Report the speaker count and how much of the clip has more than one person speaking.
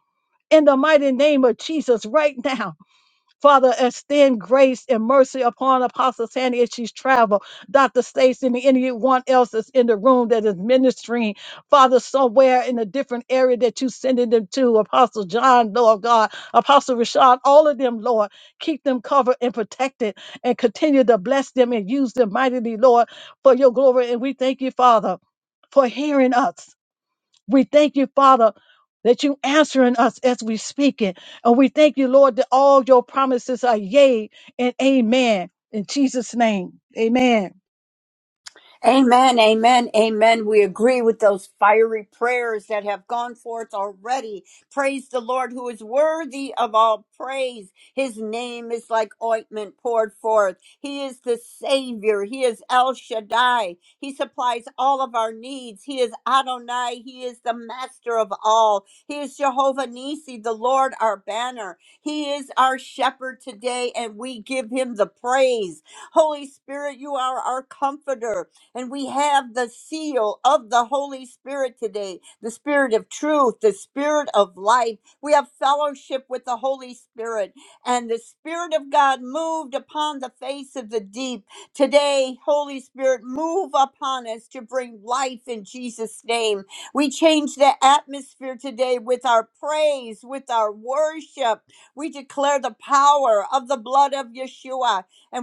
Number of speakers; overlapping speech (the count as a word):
two, no overlap